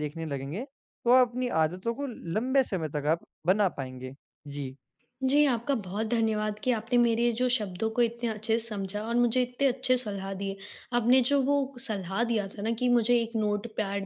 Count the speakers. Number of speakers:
2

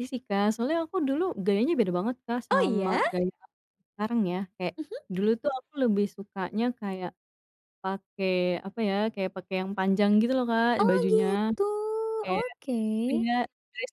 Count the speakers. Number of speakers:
2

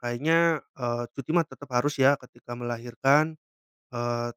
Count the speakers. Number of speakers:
1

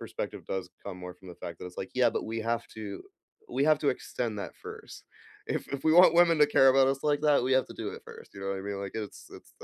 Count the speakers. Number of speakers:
1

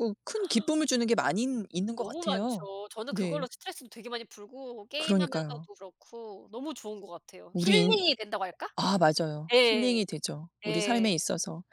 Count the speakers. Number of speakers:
2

